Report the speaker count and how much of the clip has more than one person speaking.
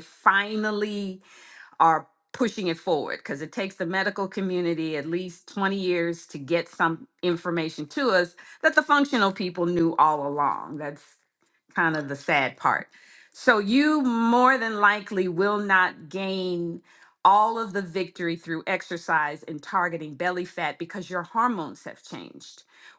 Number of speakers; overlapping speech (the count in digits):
1, no overlap